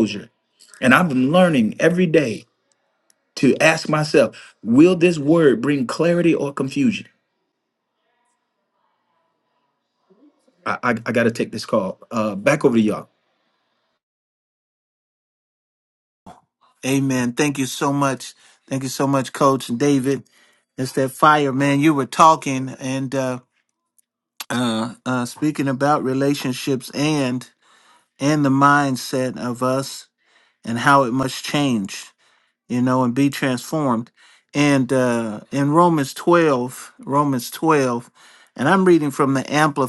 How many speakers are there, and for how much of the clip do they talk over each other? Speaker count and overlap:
two, no overlap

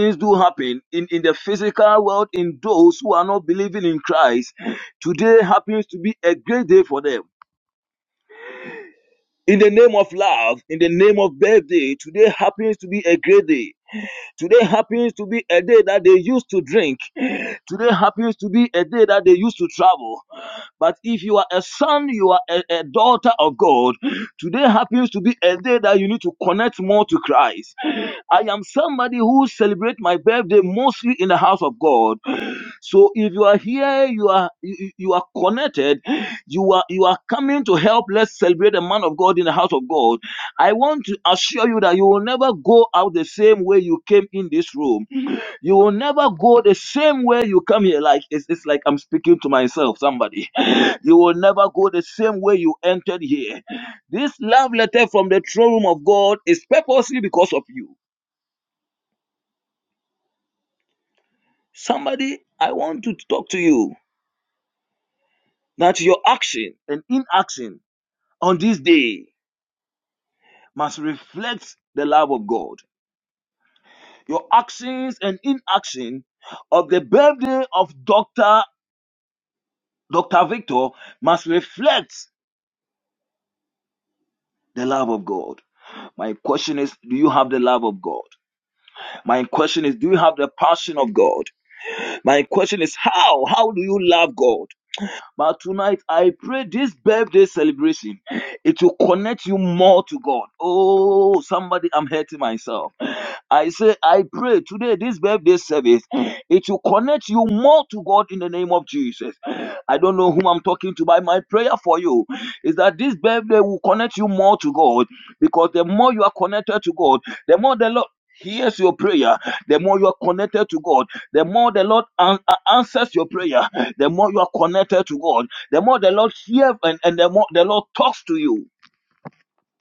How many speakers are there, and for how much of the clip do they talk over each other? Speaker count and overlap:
one, no overlap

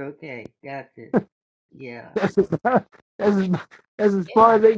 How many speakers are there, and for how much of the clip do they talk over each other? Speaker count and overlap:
two, about 8%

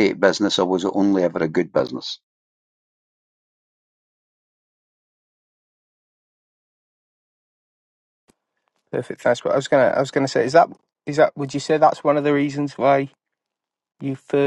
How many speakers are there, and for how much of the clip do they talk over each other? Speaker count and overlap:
two, no overlap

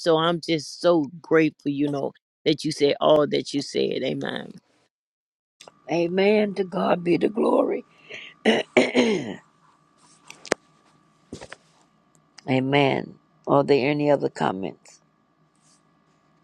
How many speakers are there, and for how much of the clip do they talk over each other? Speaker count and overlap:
two, no overlap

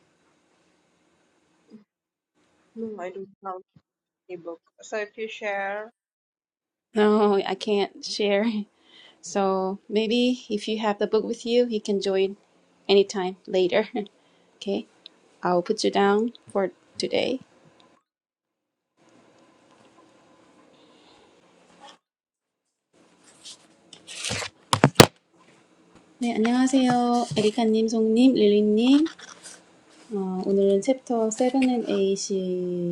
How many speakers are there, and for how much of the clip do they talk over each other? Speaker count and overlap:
two, no overlap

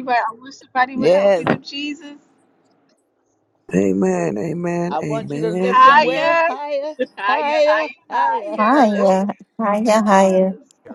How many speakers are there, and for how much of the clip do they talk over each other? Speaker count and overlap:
four, about 41%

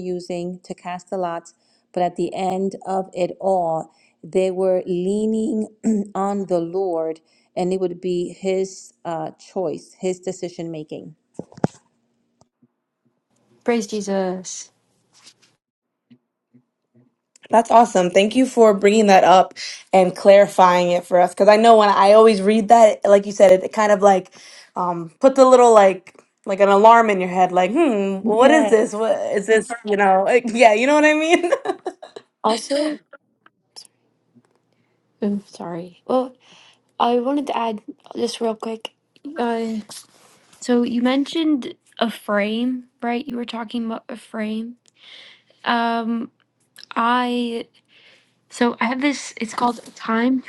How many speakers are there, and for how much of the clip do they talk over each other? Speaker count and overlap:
three, about 1%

